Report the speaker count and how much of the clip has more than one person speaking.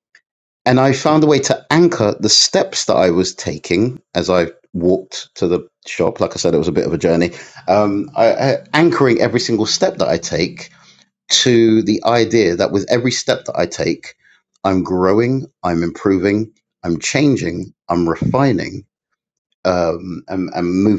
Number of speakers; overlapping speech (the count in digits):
1, no overlap